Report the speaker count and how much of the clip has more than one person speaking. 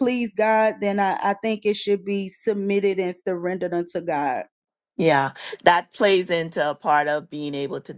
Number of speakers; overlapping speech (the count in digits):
2, no overlap